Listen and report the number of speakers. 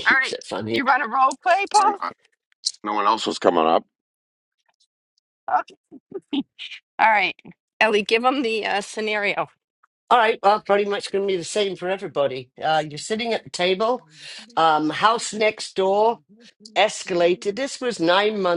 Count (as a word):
three